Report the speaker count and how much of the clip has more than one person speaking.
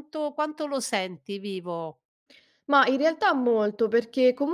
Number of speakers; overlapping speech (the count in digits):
2, no overlap